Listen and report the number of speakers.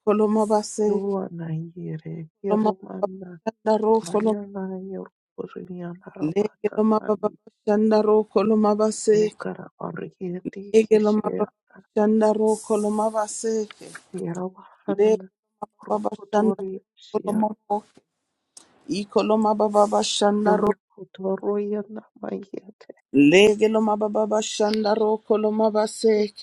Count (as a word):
two